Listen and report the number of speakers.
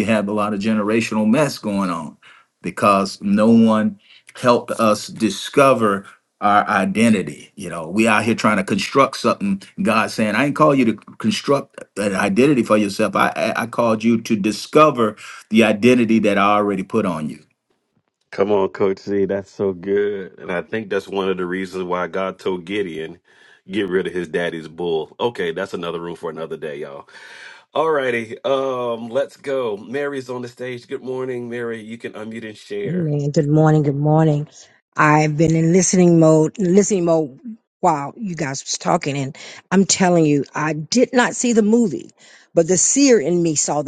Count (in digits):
3